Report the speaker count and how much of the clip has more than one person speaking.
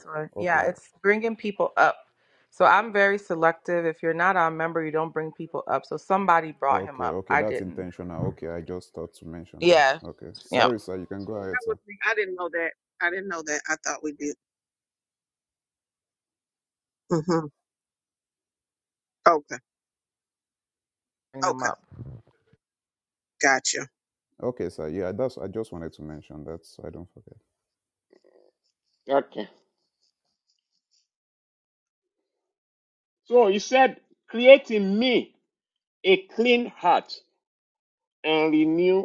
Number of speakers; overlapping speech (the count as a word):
four, about 6%